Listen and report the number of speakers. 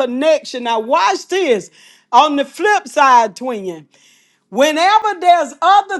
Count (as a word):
one